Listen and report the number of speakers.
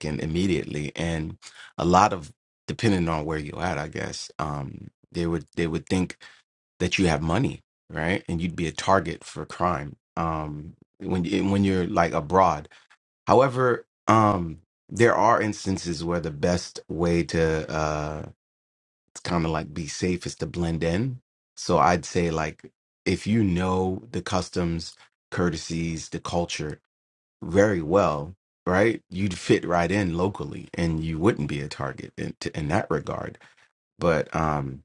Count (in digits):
1